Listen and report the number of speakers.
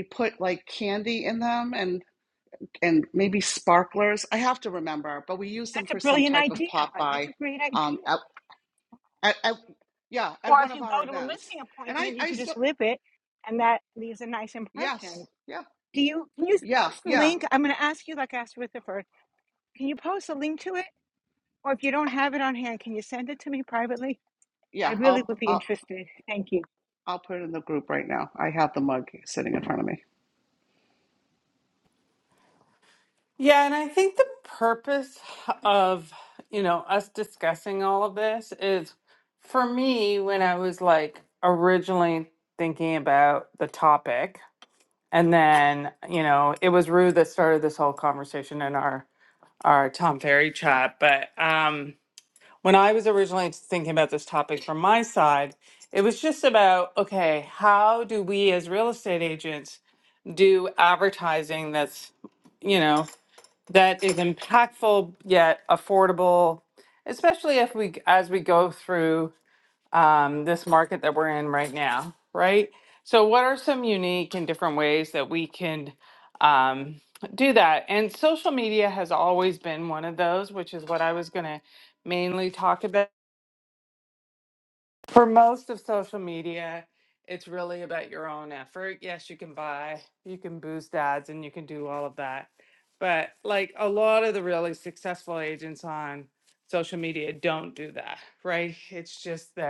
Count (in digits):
3